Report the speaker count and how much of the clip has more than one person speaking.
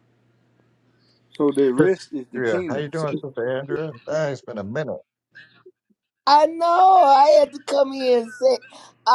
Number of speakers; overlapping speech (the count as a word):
three, about 10%